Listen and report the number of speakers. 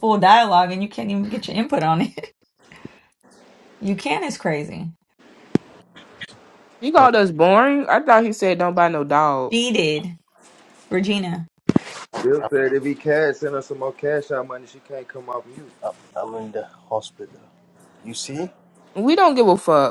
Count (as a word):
four